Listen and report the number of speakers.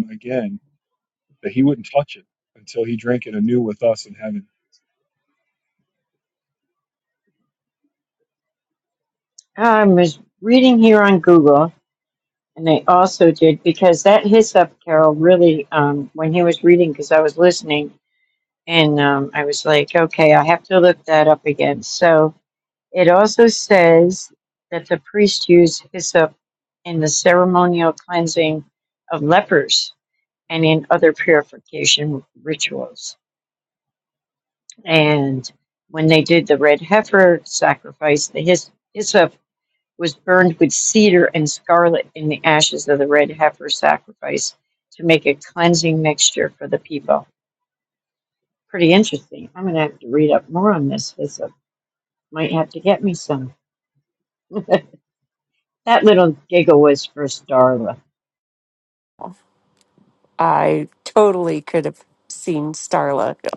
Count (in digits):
3